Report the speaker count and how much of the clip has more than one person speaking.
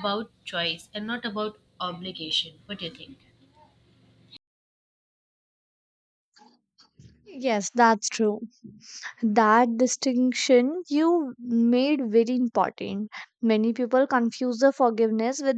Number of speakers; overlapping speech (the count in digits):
2, no overlap